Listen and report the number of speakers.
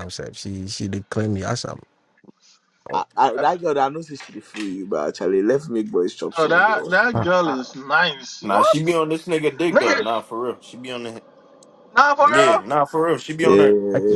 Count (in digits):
4